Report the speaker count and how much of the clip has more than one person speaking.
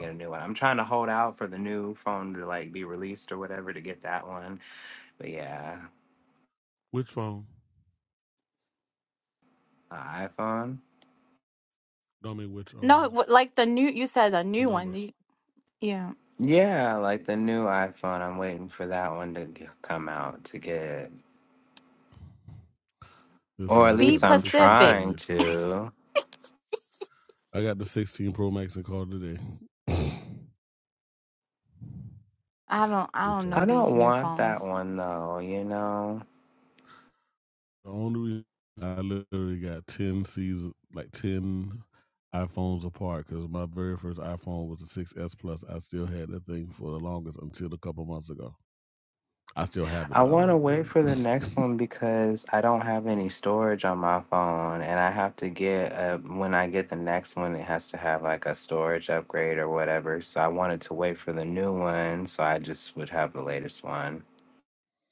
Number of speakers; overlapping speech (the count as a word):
three, about 8%